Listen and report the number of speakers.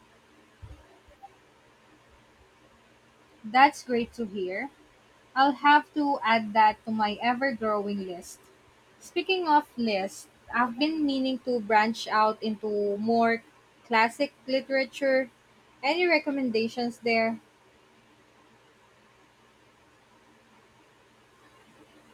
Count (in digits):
1